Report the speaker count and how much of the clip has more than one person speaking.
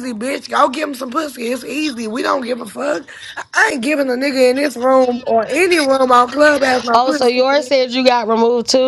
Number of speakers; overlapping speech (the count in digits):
2, about 9%